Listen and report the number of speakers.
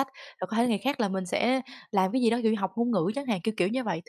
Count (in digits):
1